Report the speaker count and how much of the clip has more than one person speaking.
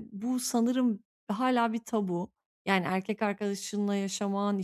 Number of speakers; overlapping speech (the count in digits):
1, no overlap